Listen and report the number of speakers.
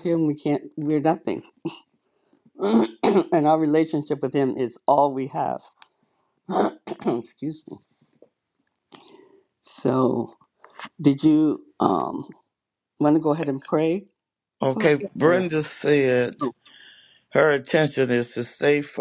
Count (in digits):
2